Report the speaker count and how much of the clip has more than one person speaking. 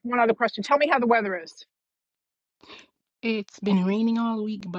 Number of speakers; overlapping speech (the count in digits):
2, no overlap